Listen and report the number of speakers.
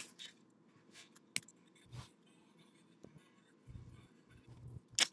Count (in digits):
0